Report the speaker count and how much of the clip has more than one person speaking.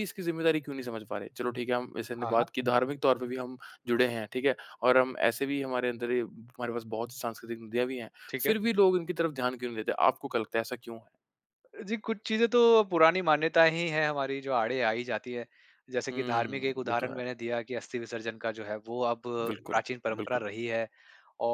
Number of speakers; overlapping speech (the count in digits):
2, about 10%